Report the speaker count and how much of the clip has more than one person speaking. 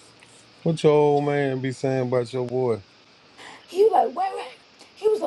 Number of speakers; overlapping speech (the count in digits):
2, no overlap